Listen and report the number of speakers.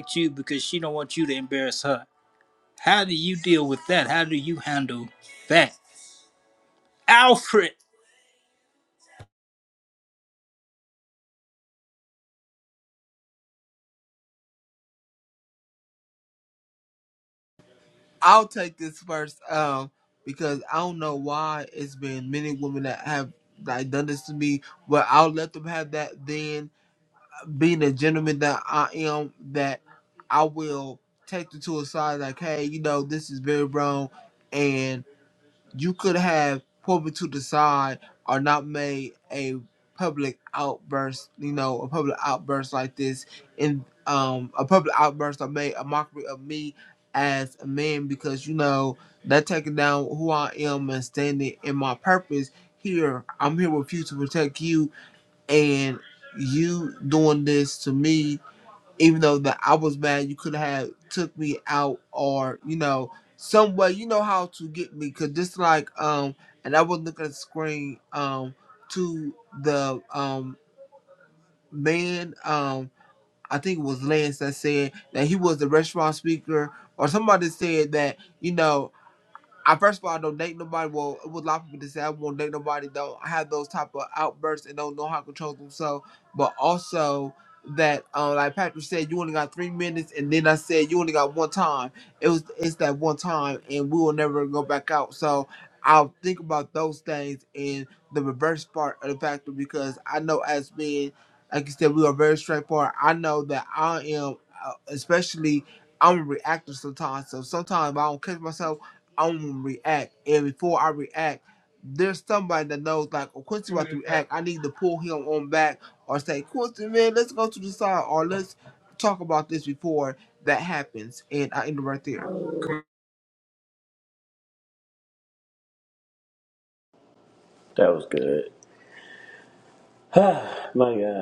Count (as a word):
three